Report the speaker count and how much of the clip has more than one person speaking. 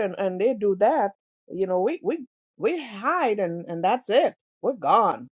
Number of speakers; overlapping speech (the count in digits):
1, no overlap